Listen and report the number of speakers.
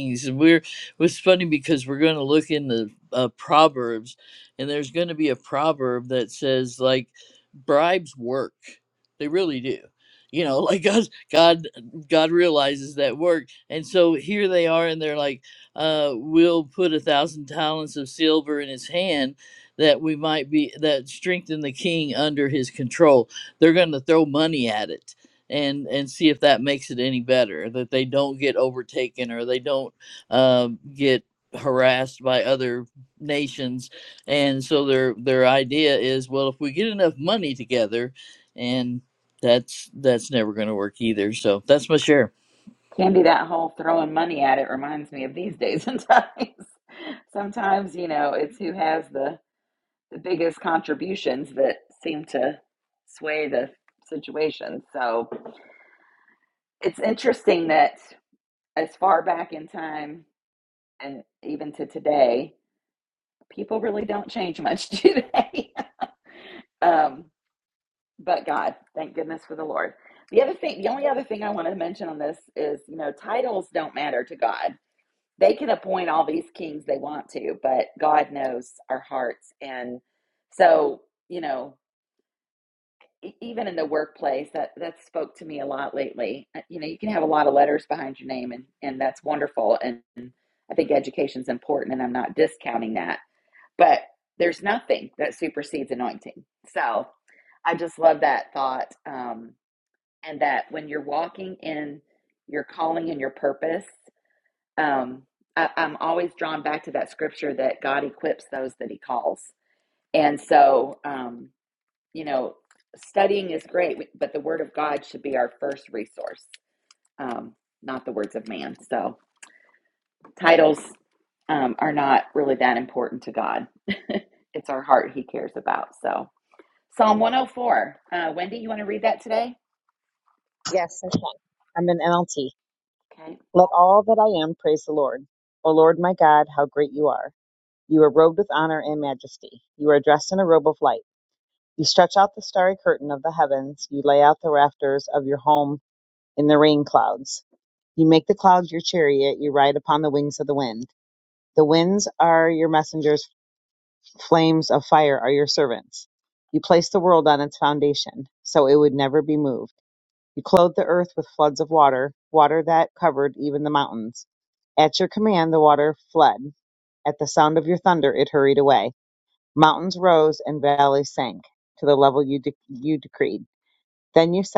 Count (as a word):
three